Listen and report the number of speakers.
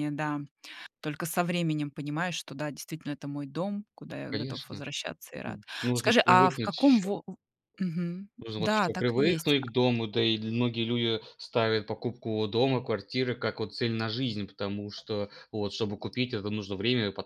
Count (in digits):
2